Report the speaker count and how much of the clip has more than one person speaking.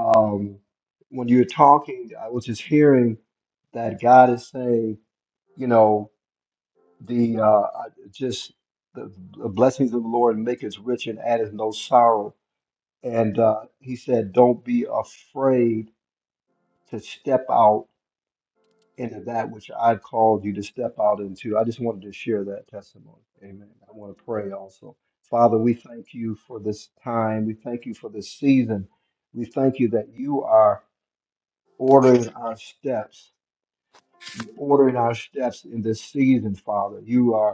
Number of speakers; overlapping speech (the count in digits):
1, no overlap